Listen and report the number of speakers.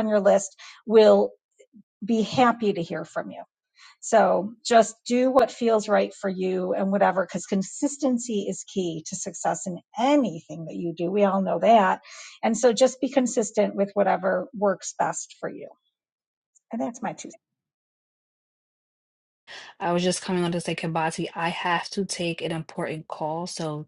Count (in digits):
2